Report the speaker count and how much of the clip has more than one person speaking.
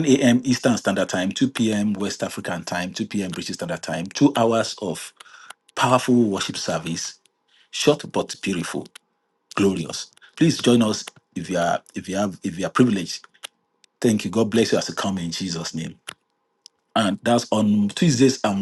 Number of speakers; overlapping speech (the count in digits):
1, no overlap